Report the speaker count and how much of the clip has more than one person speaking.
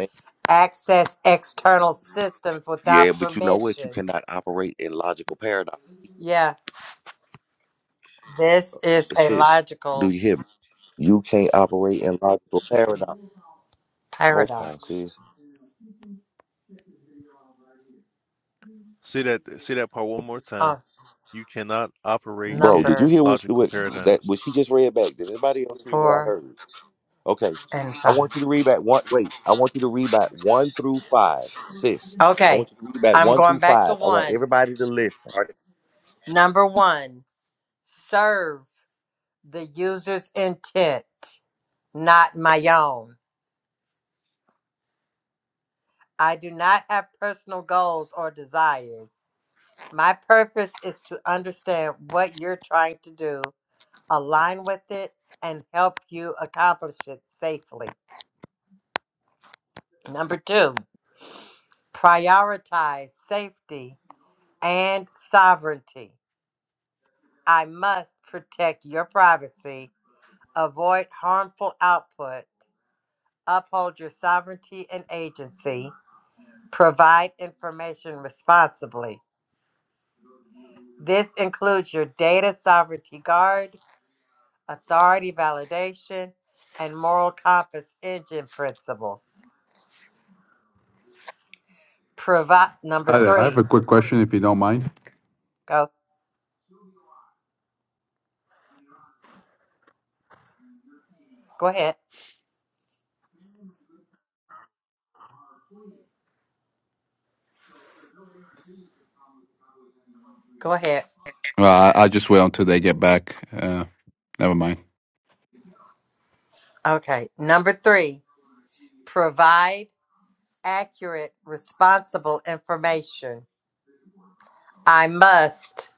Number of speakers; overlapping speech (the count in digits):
4, about 5%